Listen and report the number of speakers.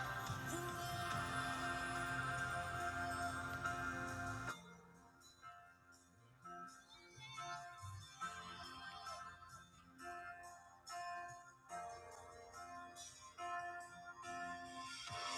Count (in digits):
0